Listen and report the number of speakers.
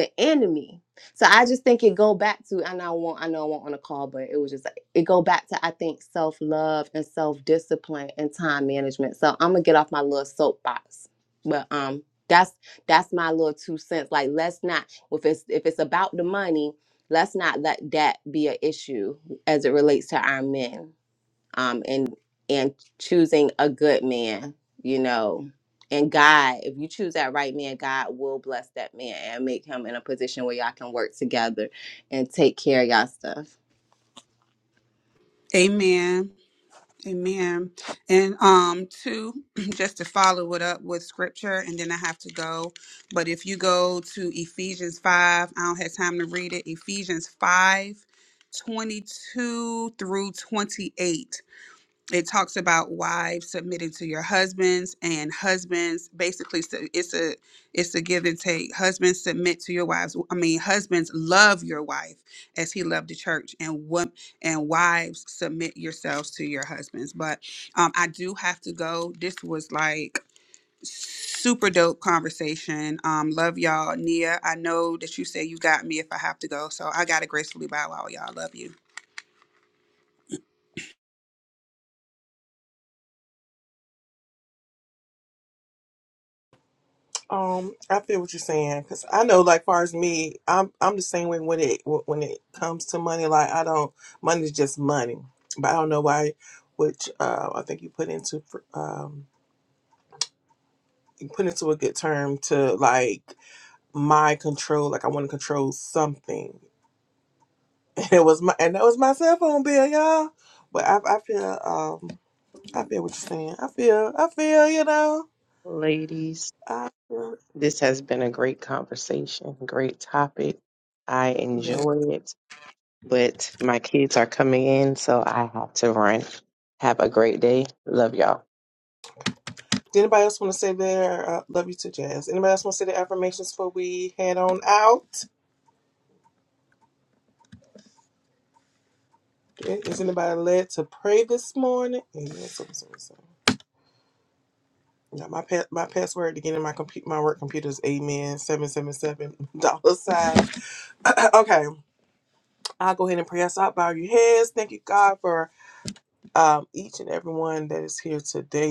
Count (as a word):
four